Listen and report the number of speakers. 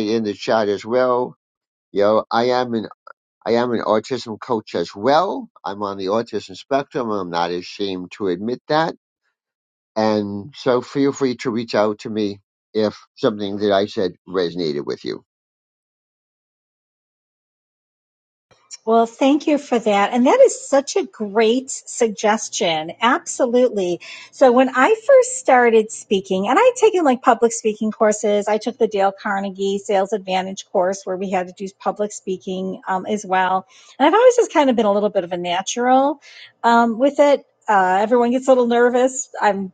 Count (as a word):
two